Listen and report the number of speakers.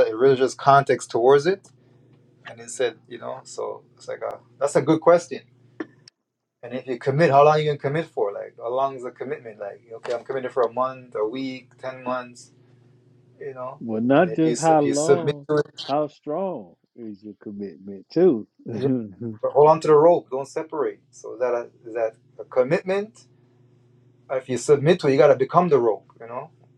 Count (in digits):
2